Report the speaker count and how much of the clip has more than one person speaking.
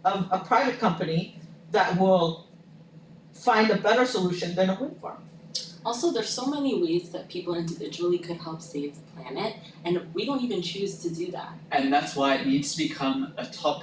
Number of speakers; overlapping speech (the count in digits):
3, under 1%